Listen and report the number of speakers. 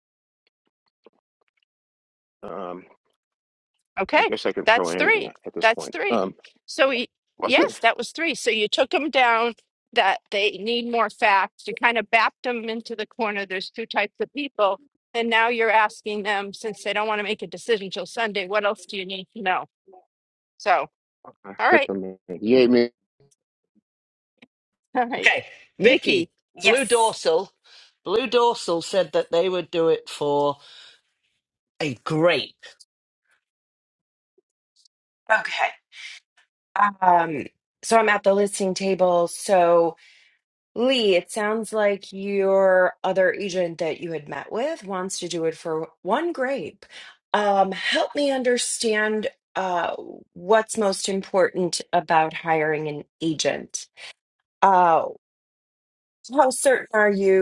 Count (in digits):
4